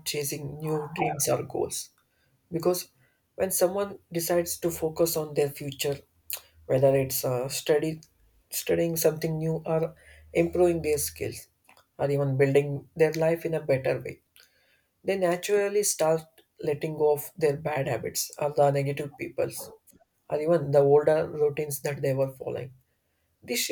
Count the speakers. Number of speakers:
1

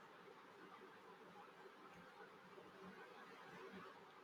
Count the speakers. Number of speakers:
0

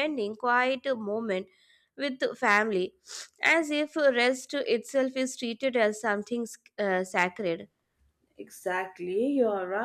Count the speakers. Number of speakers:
2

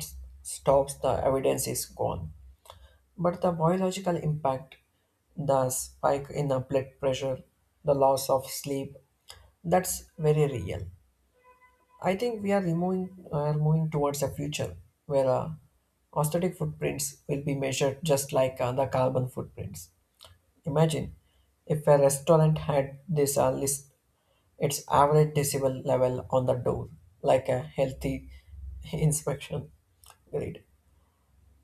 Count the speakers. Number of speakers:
1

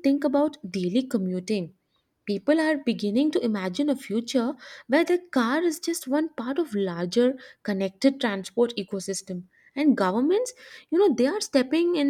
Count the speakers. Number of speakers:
1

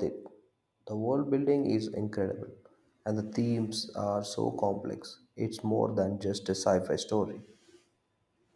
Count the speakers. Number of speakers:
1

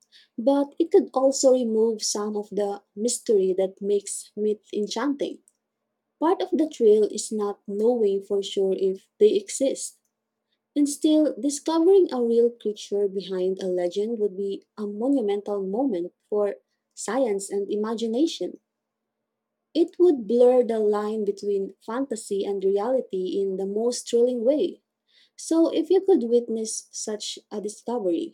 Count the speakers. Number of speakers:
1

